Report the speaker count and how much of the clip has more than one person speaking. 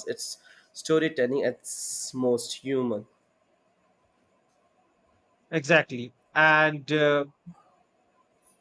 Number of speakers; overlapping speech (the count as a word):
two, no overlap